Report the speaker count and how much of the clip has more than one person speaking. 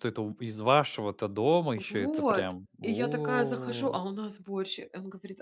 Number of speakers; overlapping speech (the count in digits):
2, about 38%